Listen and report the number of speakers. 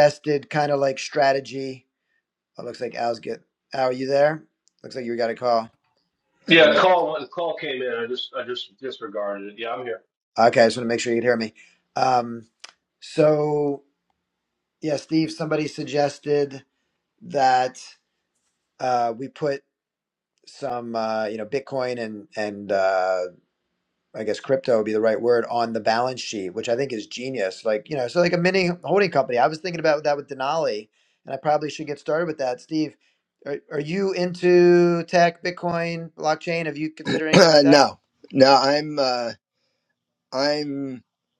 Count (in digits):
3